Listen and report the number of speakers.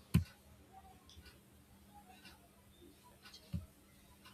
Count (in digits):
0